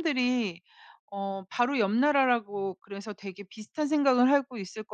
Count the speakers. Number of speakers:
1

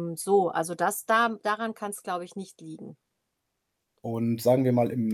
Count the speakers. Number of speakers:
2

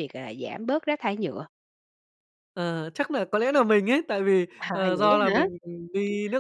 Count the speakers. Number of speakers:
2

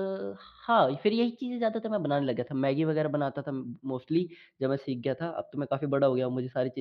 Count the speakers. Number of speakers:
1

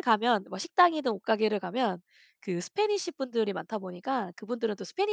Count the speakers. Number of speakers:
1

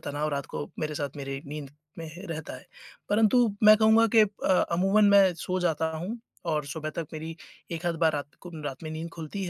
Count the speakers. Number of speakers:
1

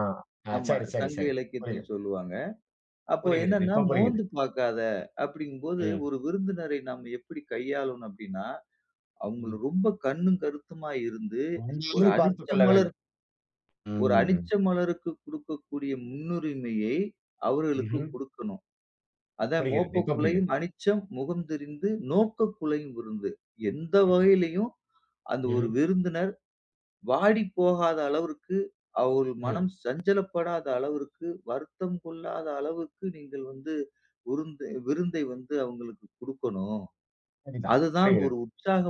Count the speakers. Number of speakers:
2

